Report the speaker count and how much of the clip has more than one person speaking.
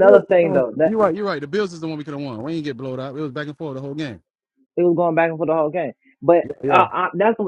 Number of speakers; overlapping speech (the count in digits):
2, about 19%